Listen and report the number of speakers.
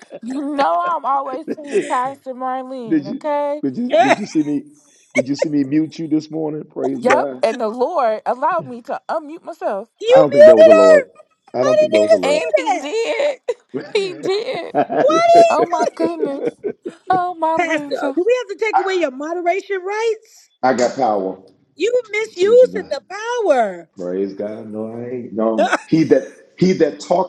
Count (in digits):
3